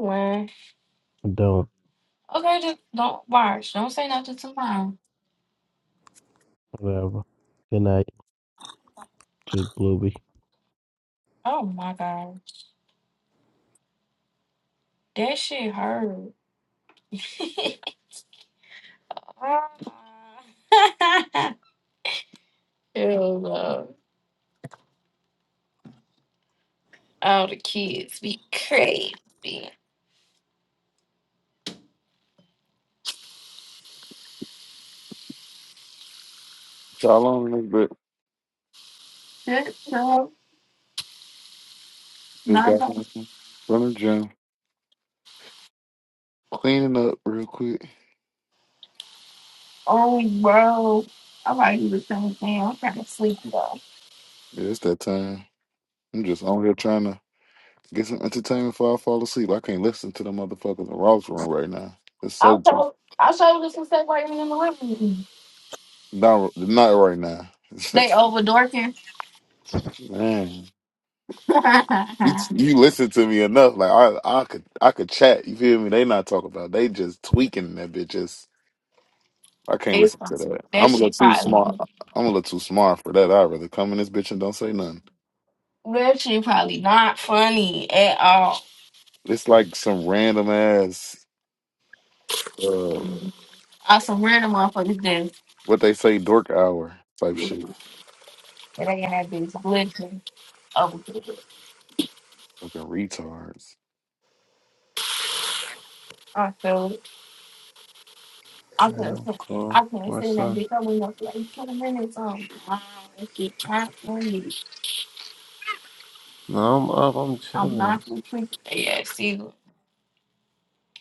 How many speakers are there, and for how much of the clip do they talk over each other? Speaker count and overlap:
four, about 3%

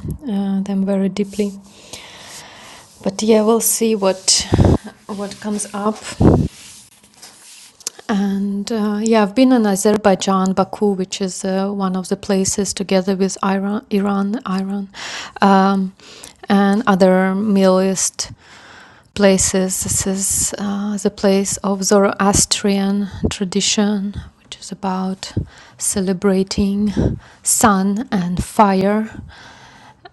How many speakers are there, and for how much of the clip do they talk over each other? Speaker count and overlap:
one, no overlap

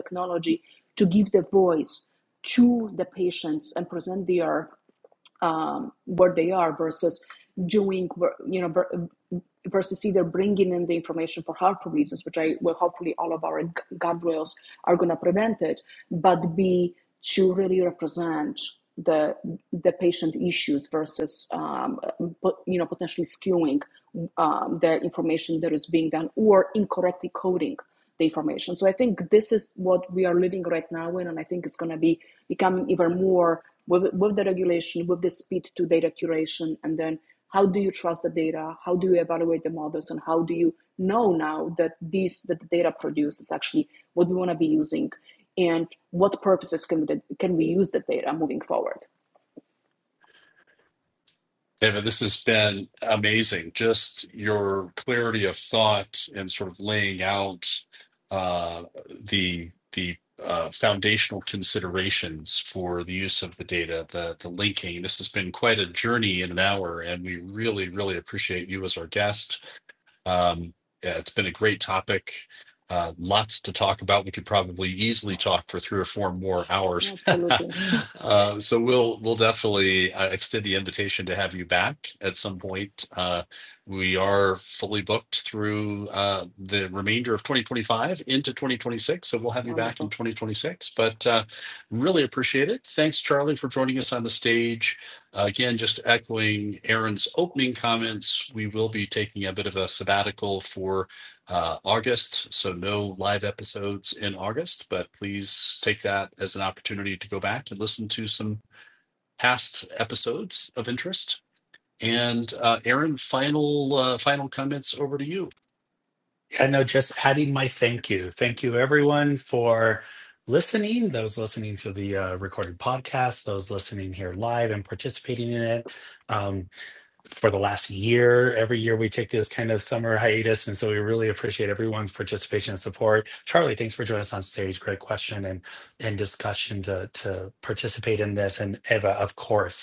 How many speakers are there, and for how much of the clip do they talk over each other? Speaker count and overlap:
three, under 1%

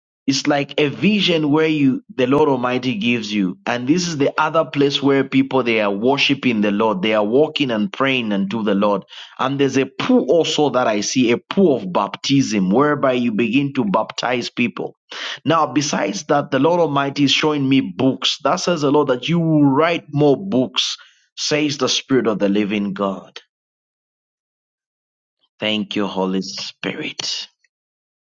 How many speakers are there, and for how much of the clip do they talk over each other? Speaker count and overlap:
one, no overlap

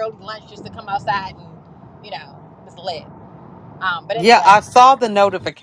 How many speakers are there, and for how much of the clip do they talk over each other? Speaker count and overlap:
two, about 6%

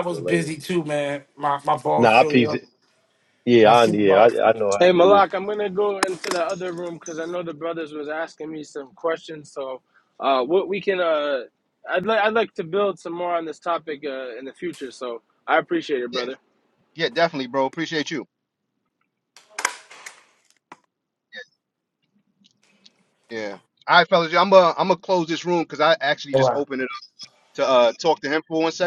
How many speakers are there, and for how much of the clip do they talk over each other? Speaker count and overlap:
four, about 9%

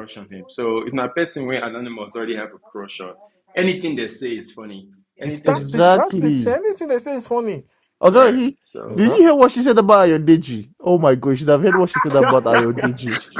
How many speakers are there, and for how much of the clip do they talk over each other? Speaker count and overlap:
three, about 14%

